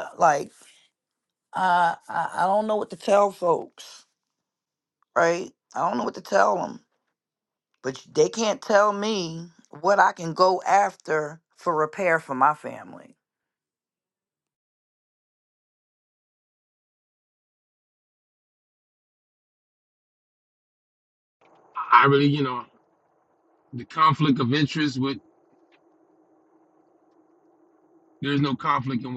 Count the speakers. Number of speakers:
2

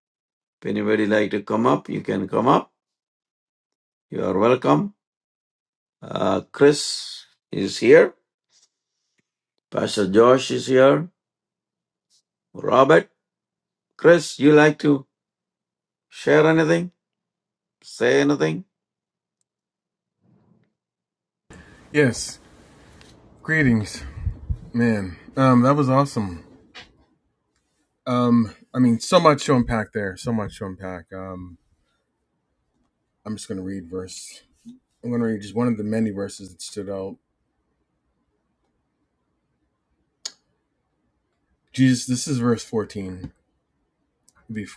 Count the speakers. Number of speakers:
2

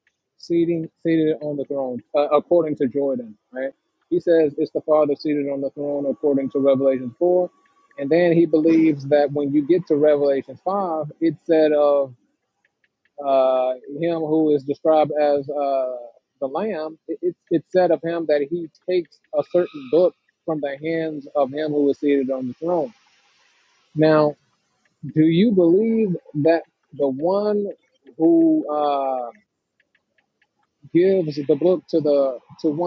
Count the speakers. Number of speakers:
1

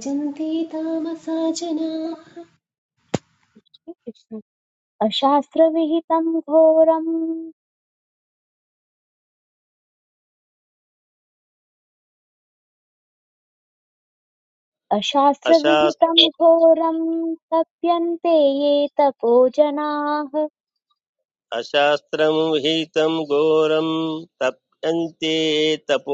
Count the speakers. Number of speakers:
3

